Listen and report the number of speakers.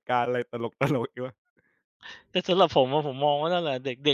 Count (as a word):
two